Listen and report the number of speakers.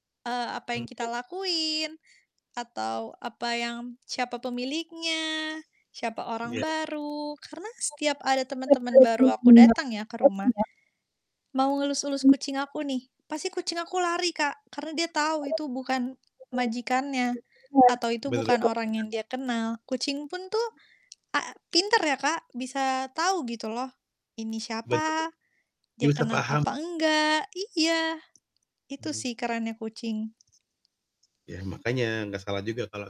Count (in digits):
2